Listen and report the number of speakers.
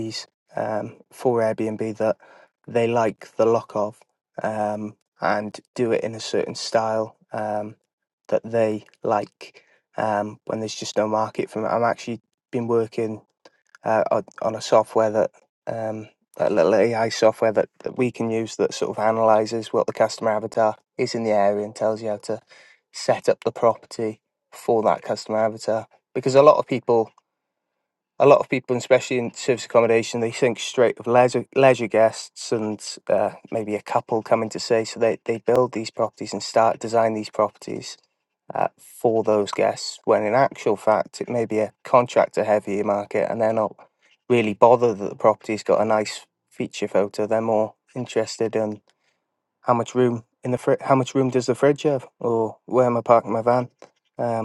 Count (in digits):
1